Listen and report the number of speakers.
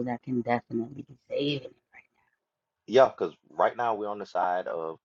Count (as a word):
two